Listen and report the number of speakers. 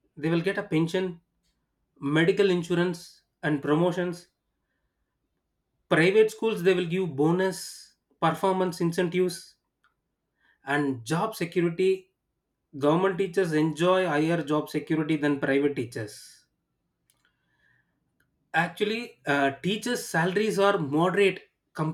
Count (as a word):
one